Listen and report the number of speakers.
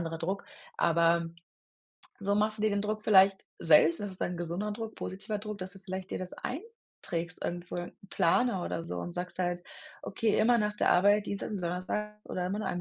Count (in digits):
1